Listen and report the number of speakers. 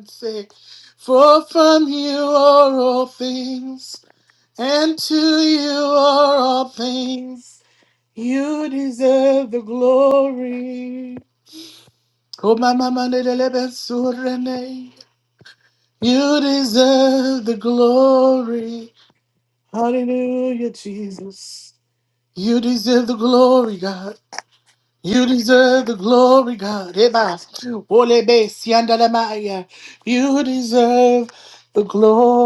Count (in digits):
1